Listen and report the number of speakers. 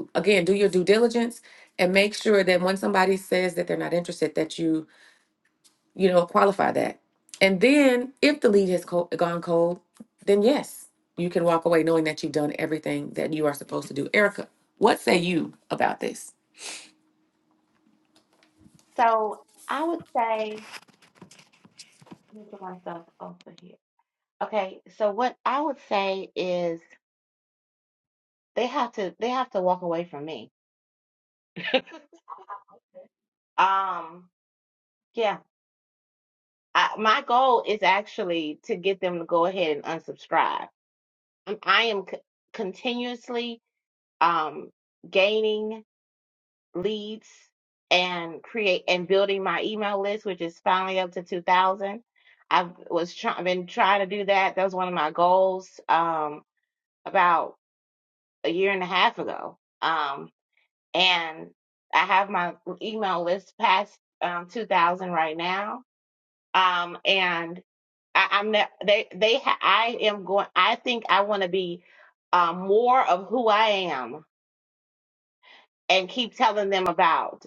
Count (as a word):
two